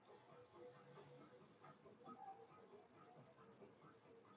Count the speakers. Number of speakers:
zero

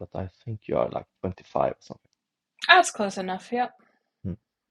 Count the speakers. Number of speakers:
two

